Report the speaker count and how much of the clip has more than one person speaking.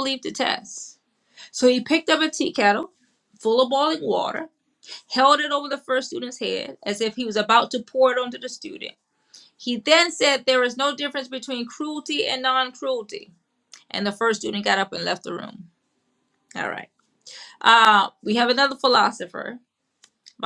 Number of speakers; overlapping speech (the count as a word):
one, no overlap